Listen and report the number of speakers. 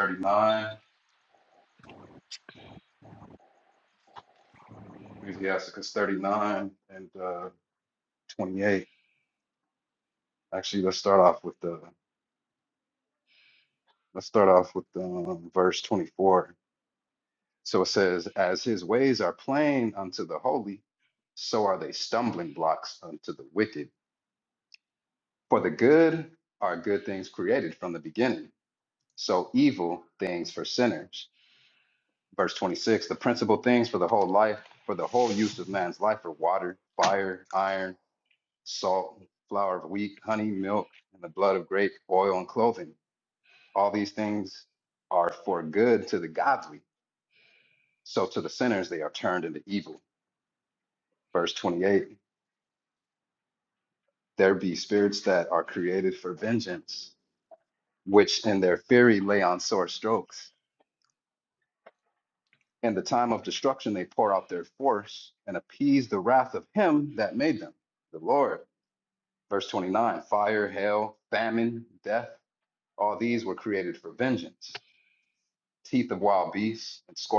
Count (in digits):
1